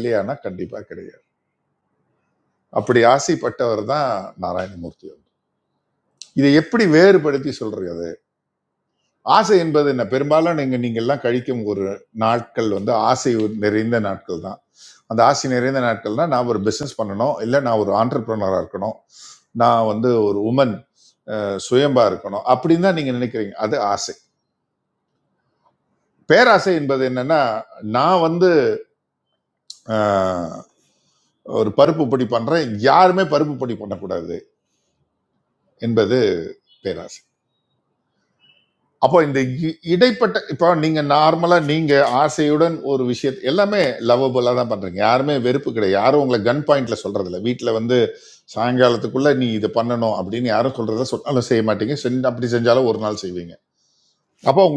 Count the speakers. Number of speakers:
one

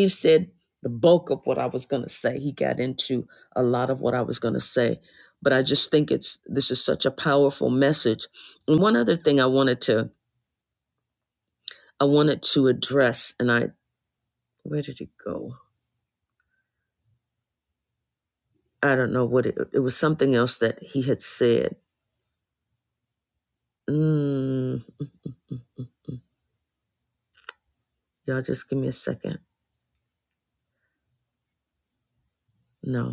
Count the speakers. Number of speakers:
one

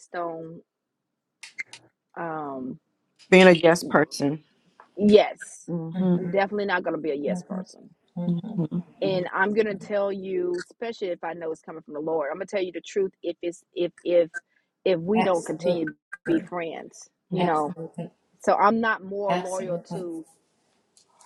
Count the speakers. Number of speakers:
three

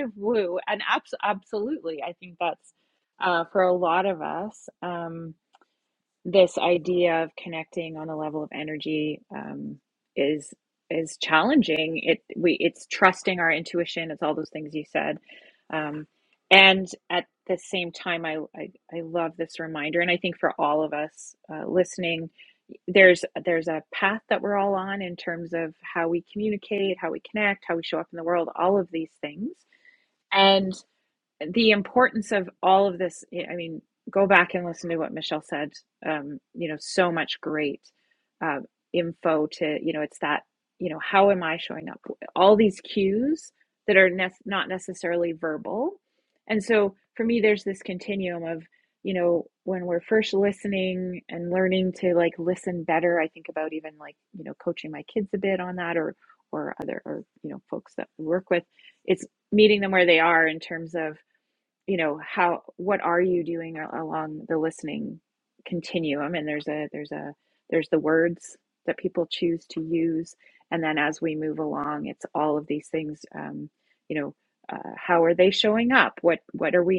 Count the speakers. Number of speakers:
one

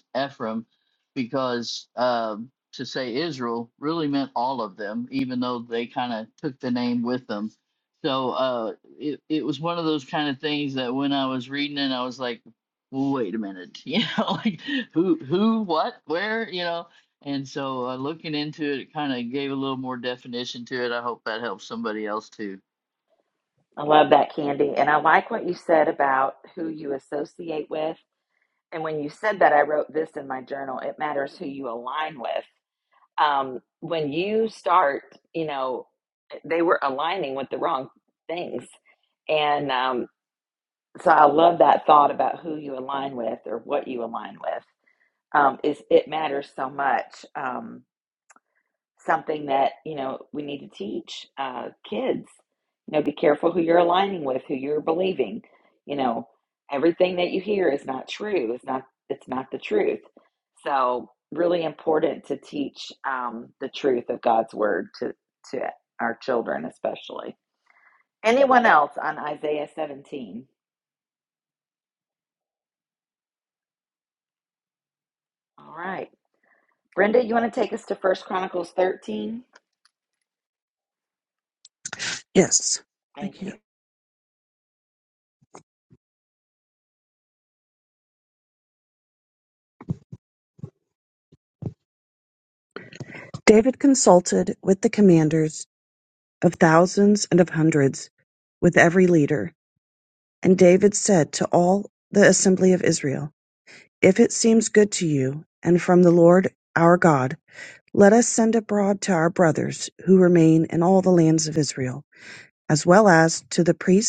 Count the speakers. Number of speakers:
three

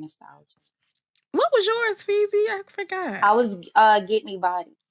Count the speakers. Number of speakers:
two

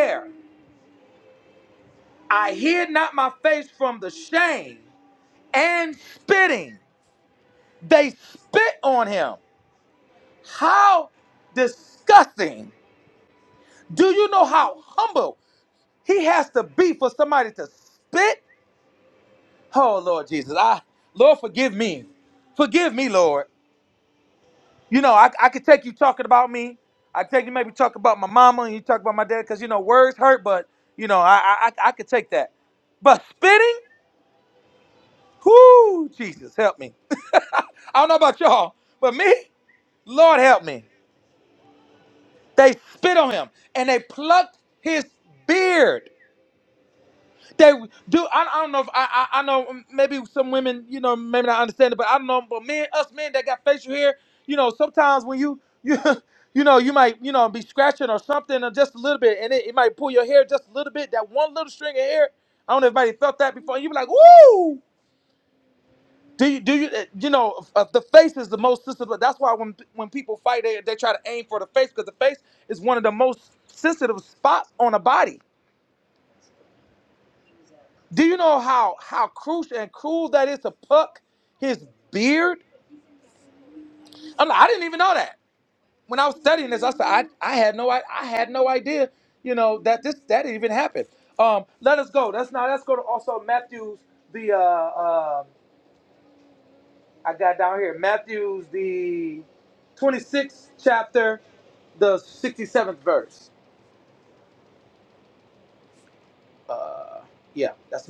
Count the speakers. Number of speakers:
one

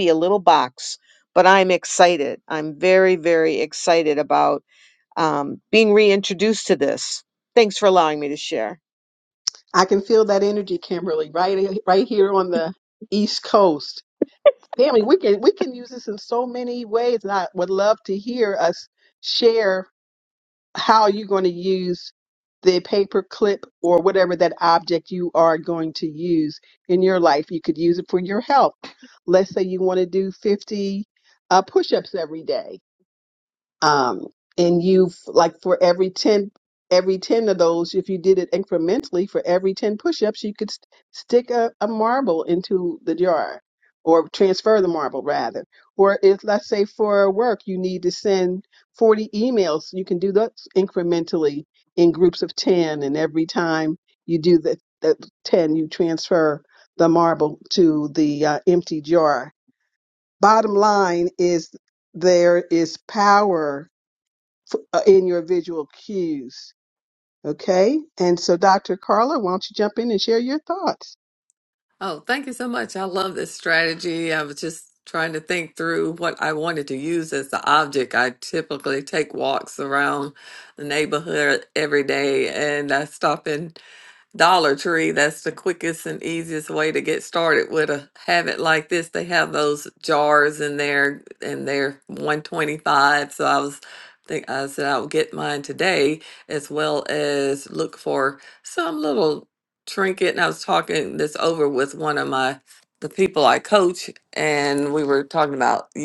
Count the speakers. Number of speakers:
three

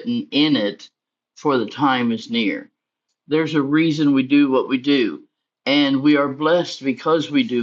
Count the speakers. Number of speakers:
one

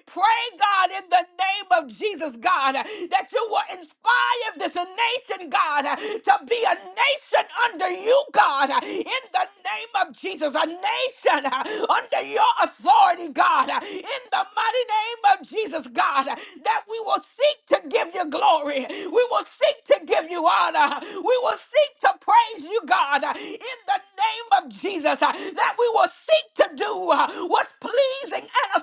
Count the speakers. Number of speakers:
one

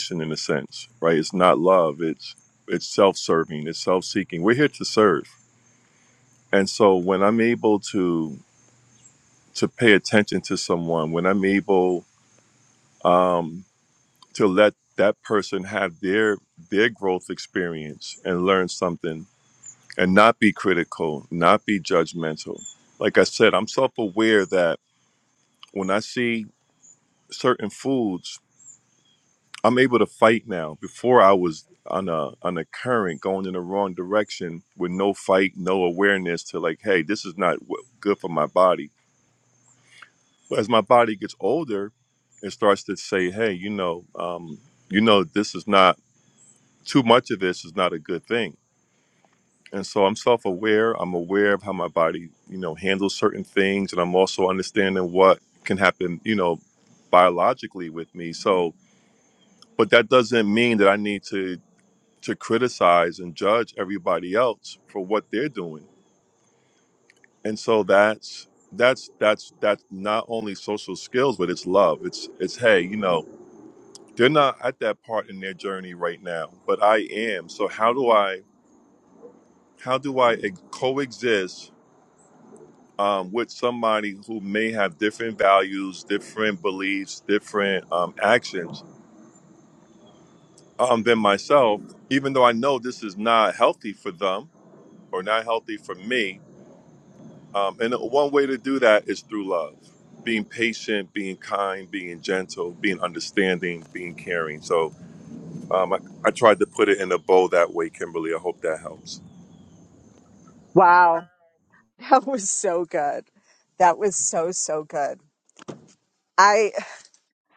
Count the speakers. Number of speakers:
two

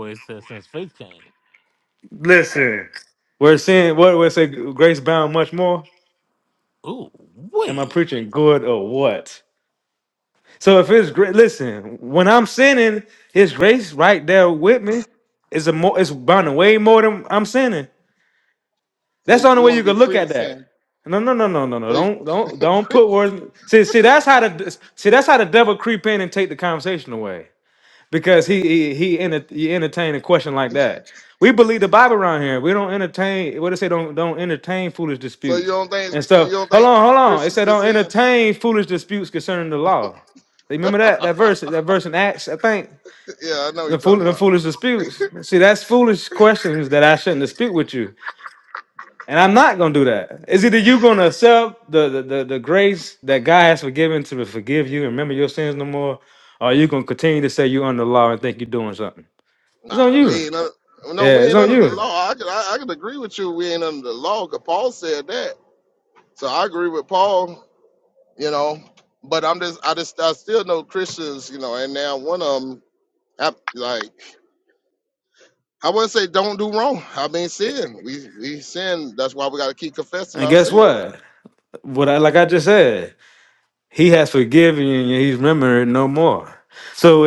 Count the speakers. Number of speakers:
three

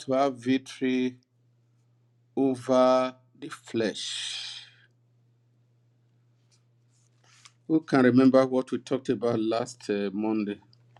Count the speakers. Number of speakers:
one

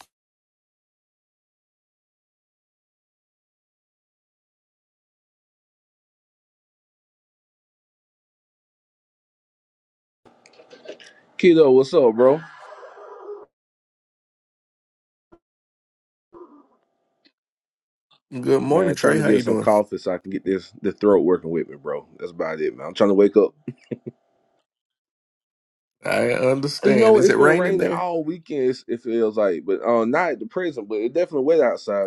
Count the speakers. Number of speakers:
two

